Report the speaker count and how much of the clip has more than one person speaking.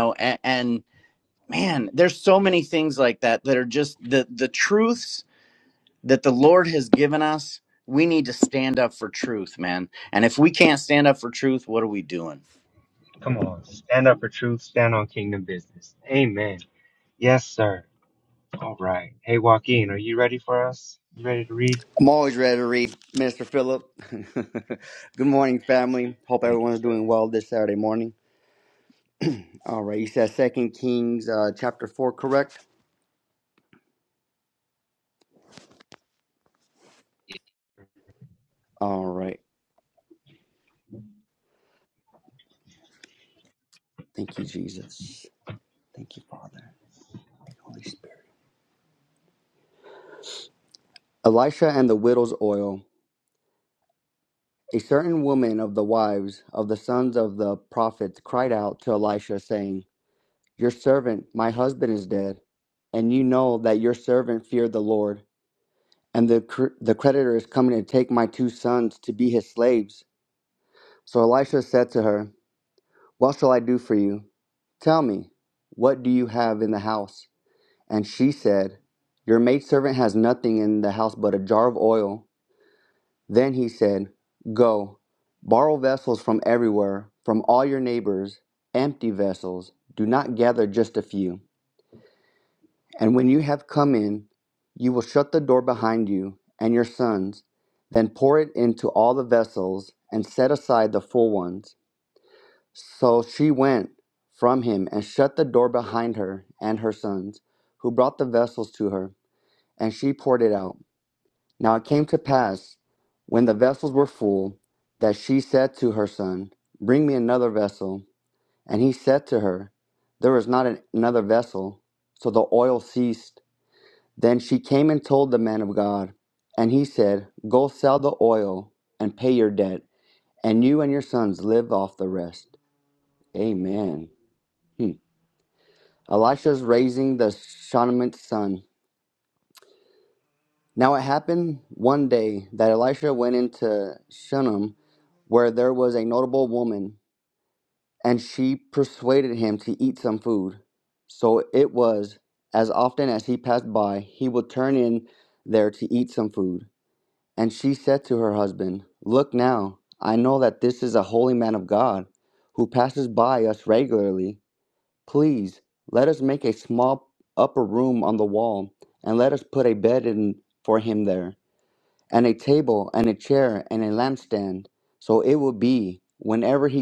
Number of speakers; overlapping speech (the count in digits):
3, under 1%